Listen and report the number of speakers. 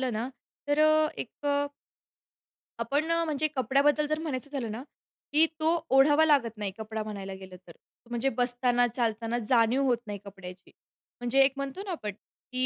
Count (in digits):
1